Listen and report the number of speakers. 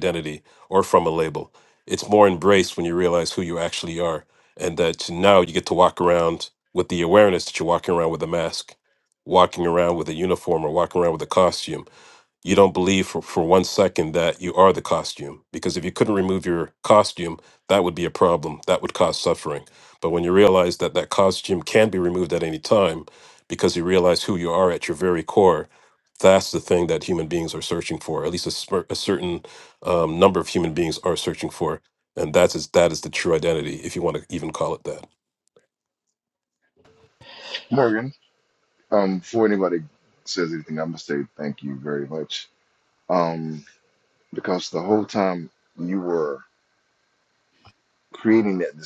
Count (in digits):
2